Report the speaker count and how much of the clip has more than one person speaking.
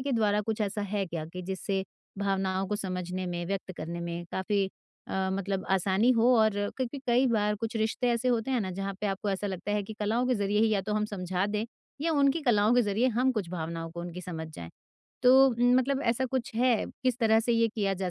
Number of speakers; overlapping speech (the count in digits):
1, no overlap